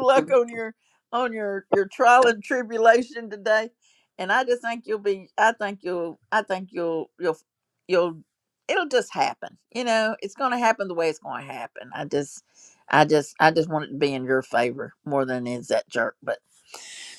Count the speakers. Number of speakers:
one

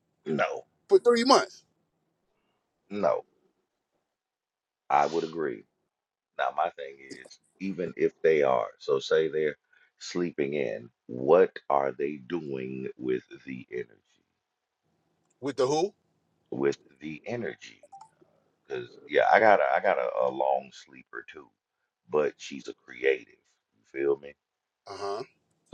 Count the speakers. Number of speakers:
two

